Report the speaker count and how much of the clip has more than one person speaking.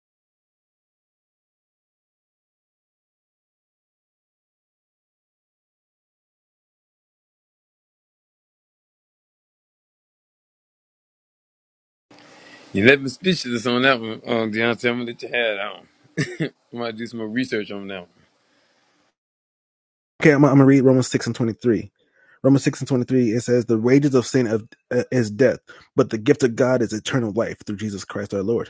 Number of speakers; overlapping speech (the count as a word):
two, no overlap